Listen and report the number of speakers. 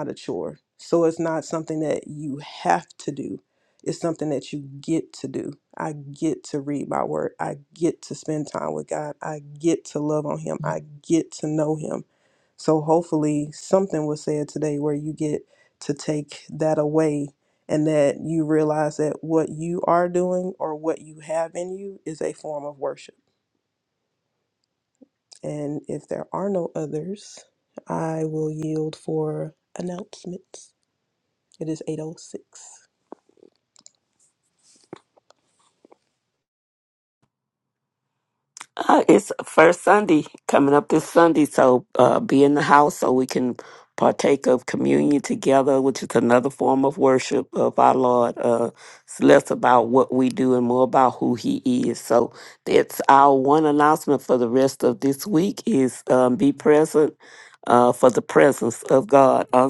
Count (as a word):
two